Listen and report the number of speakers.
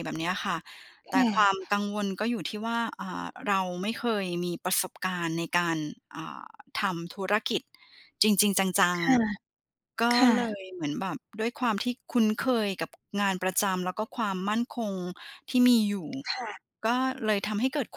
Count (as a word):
two